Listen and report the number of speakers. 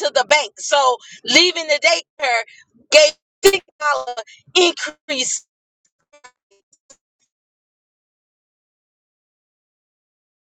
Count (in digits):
1